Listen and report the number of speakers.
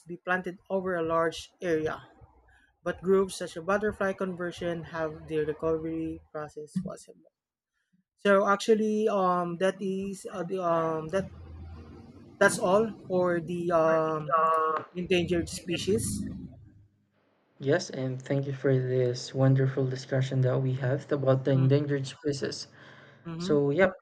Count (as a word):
two